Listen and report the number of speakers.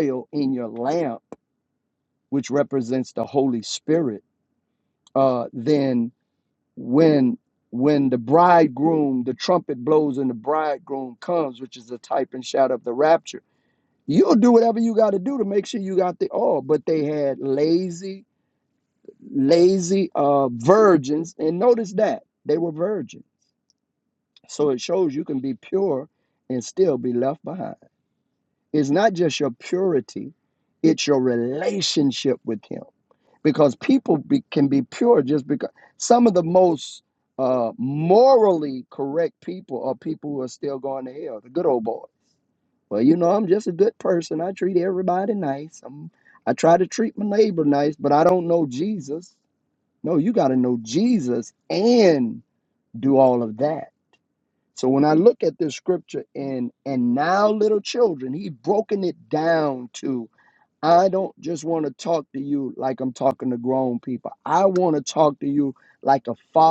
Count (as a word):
one